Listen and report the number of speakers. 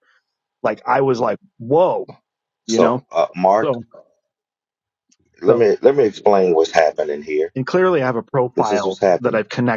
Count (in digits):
2